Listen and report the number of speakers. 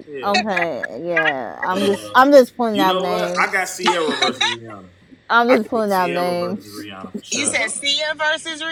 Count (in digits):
3